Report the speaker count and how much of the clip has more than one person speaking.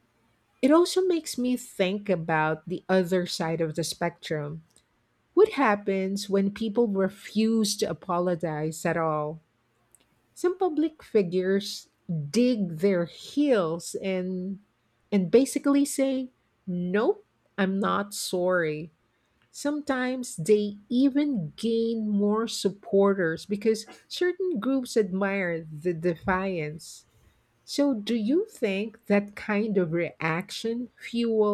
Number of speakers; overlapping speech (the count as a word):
one, no overlap